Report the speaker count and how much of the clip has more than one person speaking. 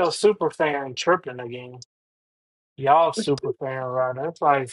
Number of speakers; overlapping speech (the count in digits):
1, no overlap